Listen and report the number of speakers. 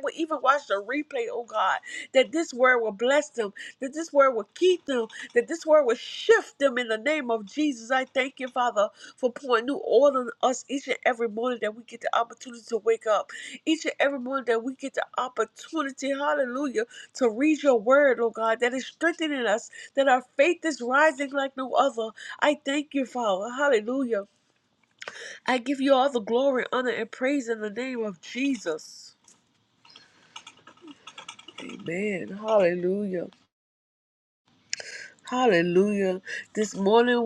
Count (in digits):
1